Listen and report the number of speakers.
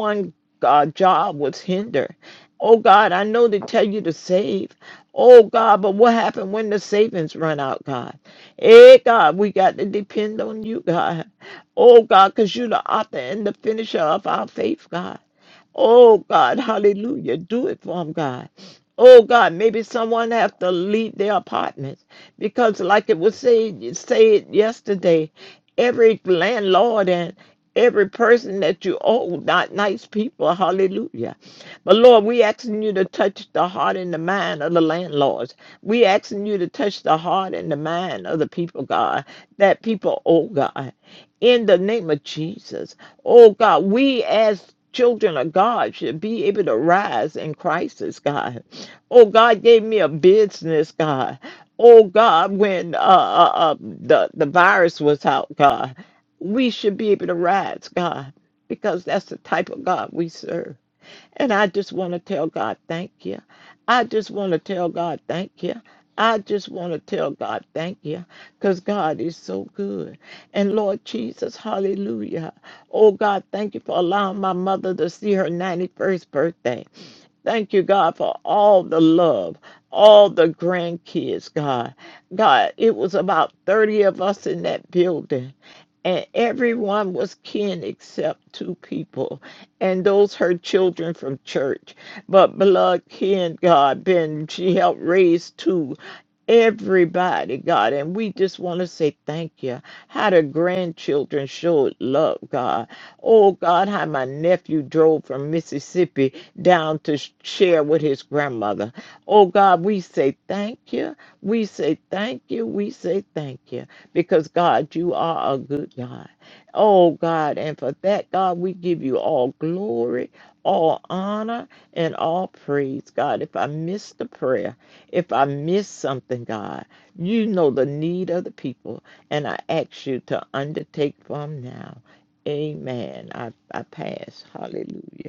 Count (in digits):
1